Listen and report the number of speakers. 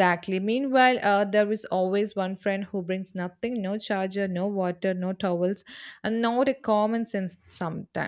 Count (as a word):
one